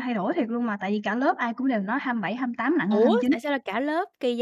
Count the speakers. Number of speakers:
2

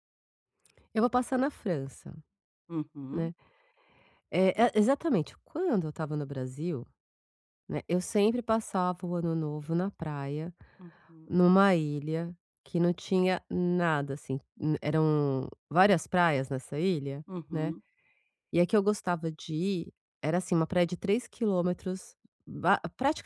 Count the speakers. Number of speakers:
2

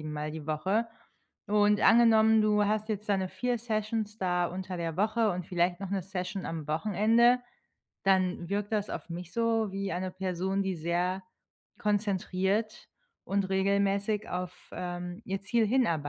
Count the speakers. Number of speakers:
1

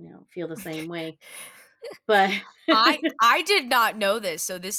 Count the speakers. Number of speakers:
2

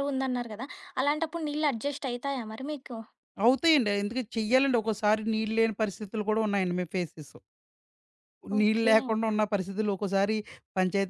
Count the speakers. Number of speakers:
2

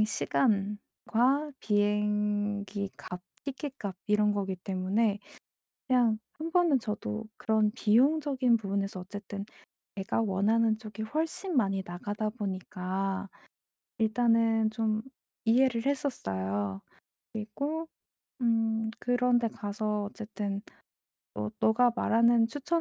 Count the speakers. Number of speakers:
1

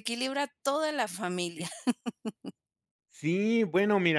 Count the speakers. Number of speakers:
2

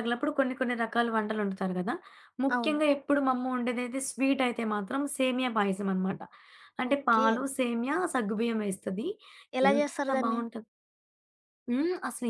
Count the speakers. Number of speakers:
2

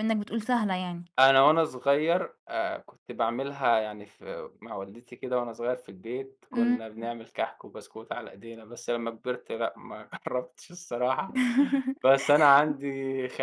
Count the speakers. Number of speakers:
2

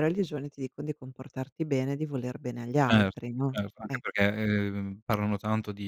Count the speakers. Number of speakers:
2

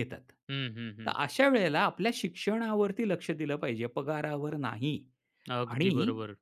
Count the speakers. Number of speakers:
2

